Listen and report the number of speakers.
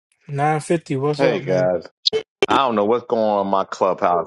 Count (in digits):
2